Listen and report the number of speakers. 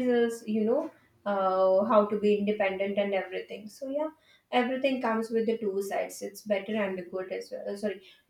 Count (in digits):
1